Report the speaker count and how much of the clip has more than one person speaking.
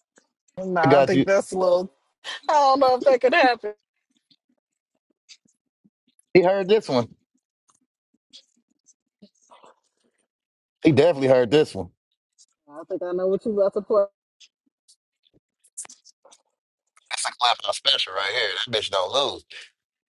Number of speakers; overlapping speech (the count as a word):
two, about 2%